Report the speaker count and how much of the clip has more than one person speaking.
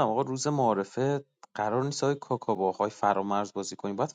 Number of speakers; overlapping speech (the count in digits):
1, no overlap